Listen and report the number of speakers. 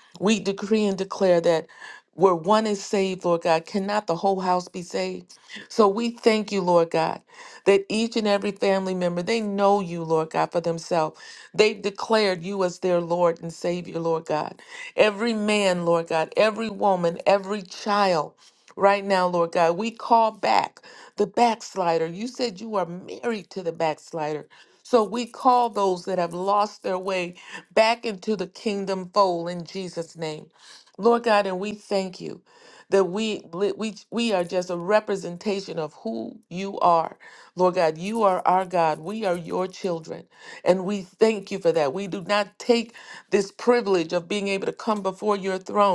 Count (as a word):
one